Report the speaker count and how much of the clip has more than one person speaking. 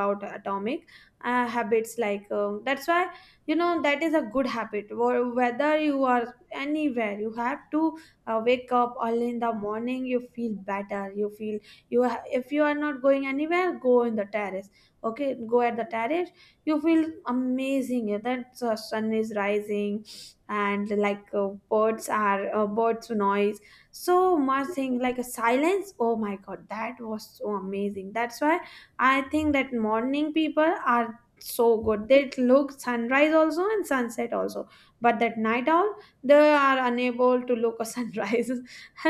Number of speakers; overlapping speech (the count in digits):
1, no overlap